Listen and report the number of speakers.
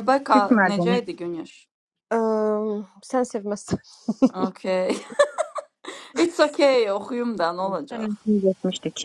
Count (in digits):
3